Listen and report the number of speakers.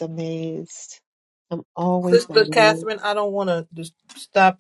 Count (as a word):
two